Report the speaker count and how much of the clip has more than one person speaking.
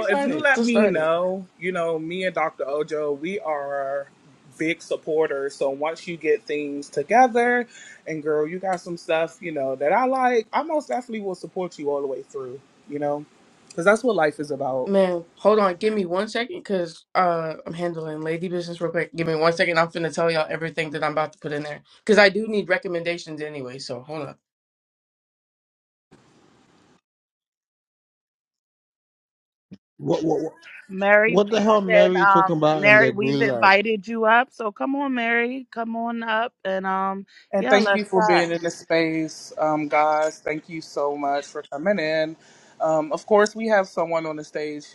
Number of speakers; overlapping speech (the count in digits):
4, about 10%